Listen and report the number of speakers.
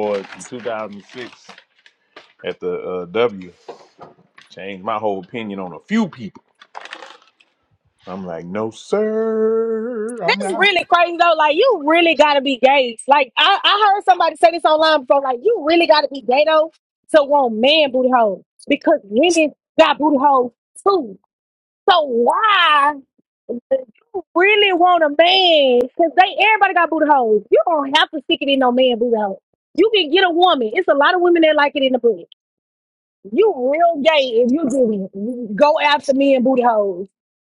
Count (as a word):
two